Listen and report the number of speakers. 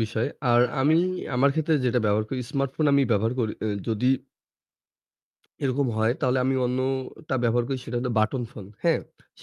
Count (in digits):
1